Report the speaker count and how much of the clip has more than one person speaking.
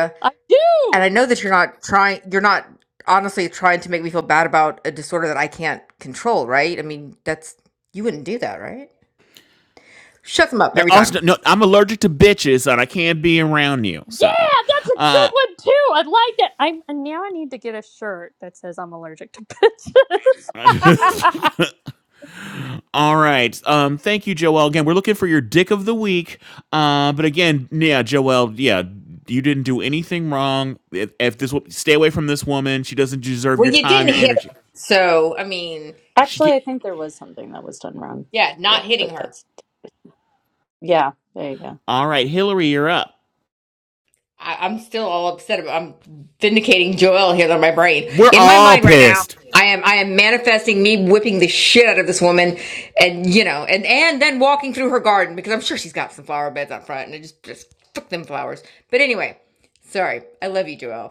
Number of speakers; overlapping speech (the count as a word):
four, about 8%